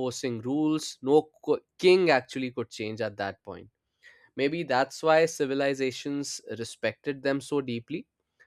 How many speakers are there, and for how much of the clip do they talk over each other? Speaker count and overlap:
1, no overlap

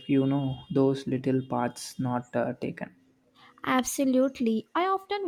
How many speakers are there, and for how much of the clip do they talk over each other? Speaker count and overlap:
2, no overlap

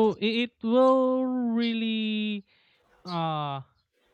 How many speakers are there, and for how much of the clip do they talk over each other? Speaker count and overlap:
1, no overlap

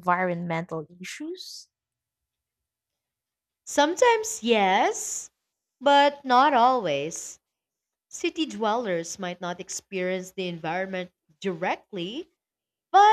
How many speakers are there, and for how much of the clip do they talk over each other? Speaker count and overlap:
2, no overlap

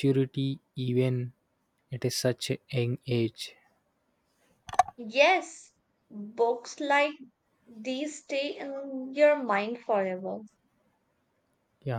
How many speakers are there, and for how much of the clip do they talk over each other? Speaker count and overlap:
2, no overlap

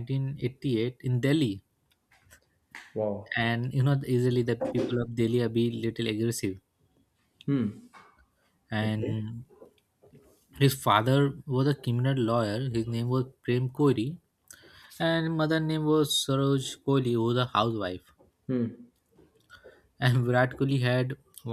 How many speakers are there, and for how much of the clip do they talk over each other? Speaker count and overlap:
2, about 2%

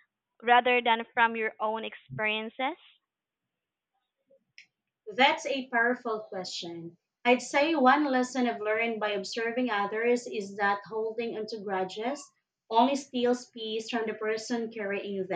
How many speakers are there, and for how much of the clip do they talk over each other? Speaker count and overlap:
2, no overlap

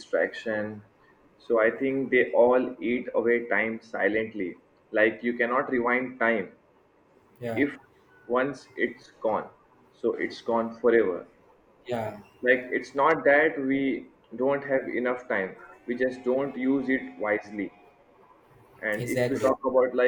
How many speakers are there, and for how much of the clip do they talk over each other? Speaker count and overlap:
2, about 3%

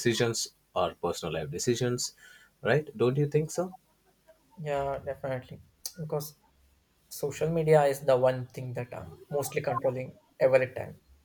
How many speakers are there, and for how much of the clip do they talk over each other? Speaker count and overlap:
2, no overlap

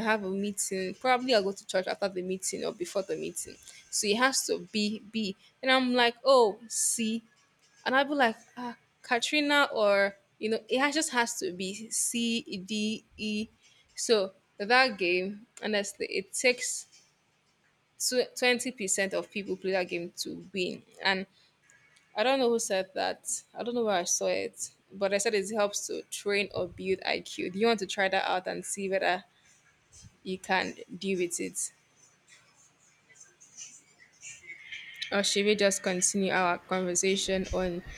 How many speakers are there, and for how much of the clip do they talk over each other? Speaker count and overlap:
1, no overlap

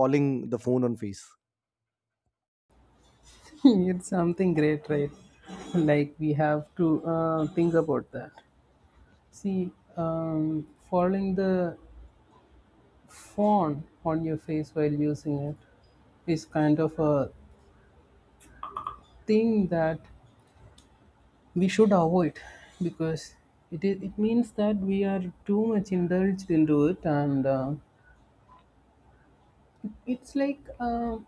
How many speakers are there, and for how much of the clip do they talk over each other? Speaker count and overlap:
2, no overlap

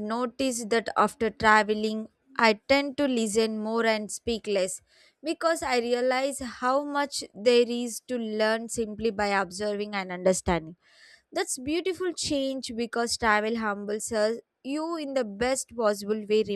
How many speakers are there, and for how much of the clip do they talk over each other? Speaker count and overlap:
1, no overlap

